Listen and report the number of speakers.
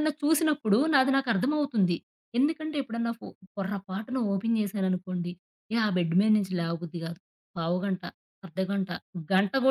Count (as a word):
one